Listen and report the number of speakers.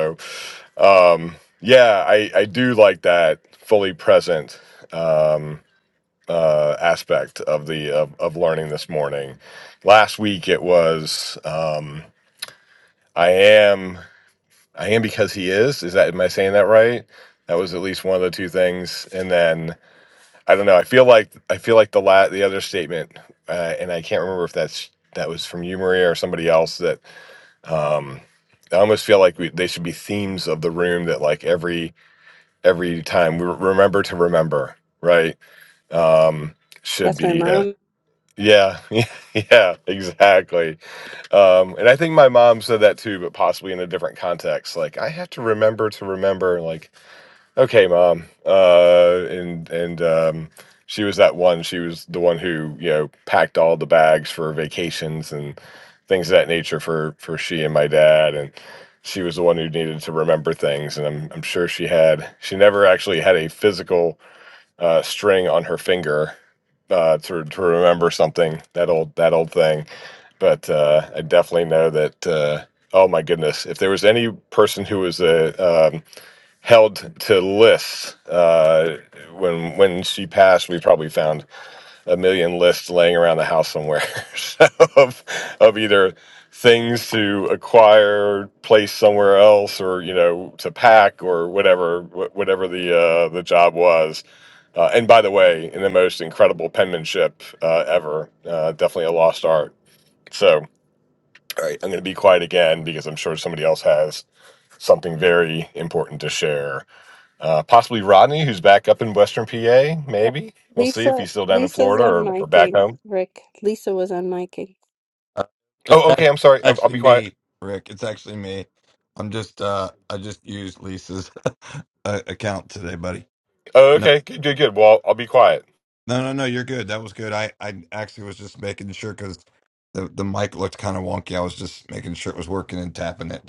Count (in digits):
3